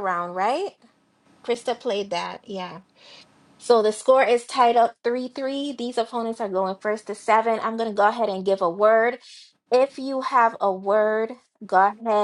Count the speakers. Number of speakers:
1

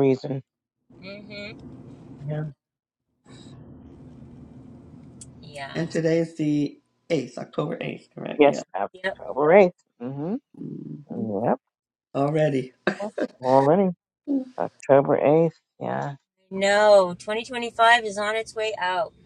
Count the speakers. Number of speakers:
3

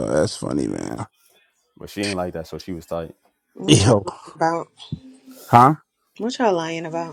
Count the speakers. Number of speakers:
3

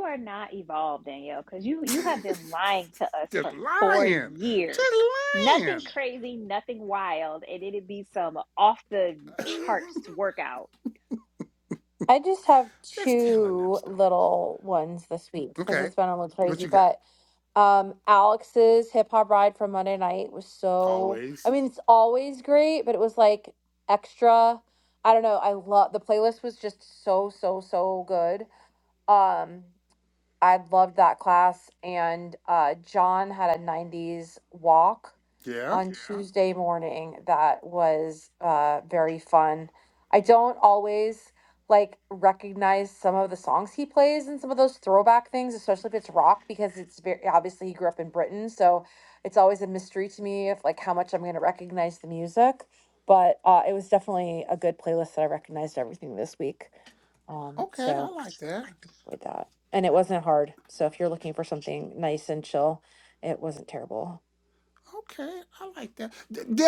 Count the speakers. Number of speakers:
3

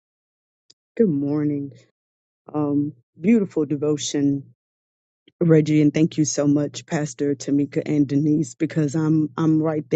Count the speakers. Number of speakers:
1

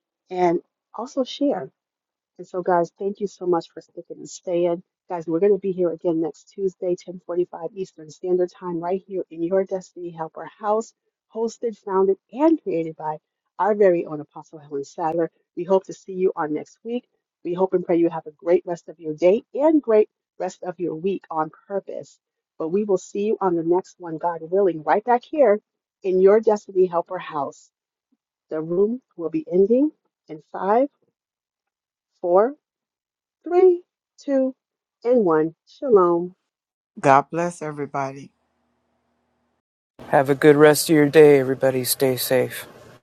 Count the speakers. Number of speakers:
3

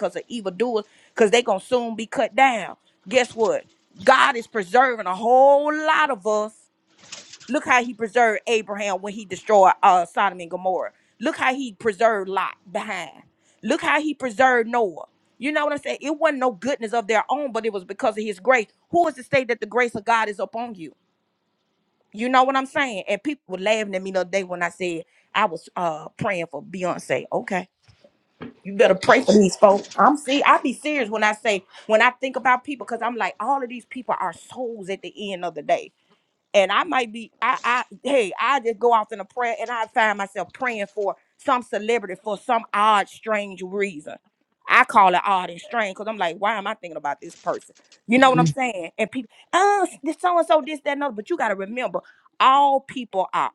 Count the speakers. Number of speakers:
1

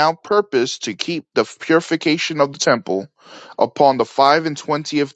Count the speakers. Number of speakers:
1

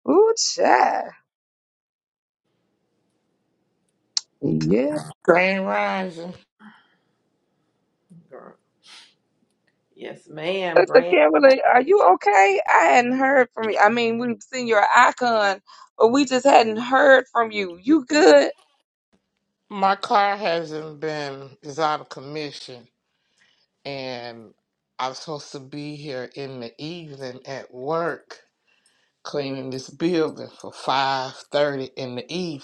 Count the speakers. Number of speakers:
3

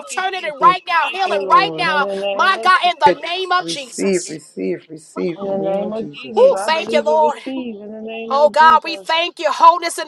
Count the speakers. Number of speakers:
3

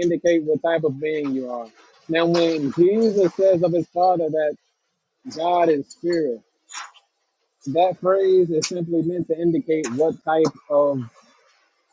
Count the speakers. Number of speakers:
1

